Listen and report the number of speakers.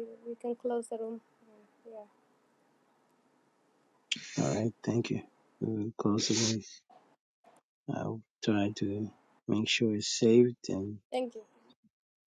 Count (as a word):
two